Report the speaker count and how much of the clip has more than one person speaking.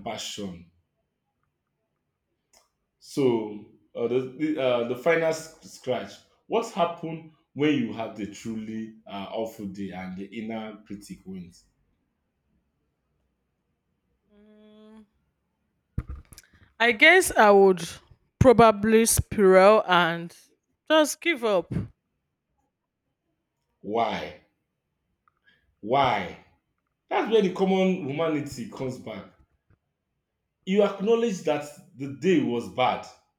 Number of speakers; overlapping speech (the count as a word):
two, no overlap